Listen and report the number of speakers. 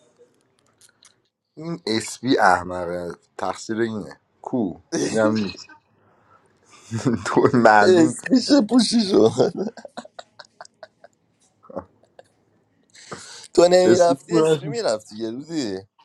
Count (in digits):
2